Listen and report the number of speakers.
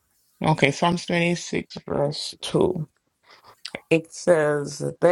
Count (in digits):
1